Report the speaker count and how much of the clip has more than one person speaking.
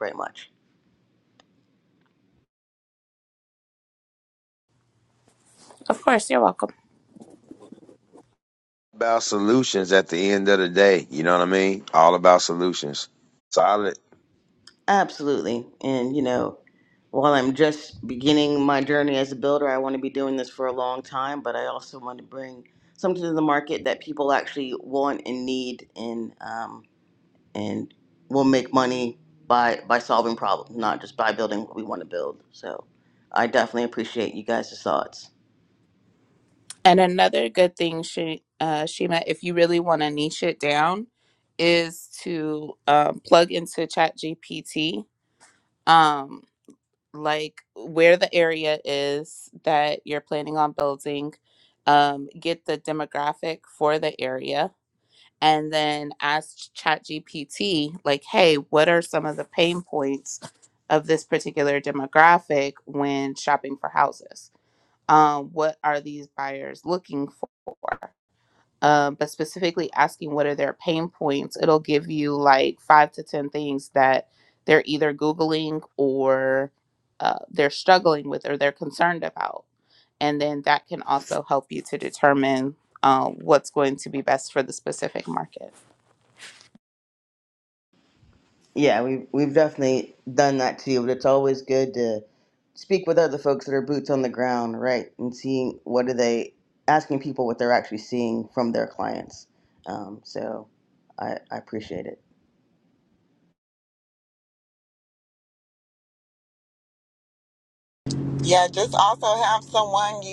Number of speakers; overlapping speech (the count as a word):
four, no overlap